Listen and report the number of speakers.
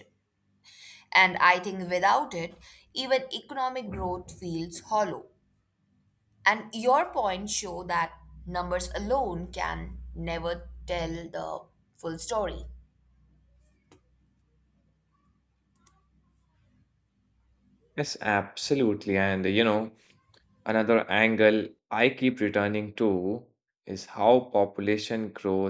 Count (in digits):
2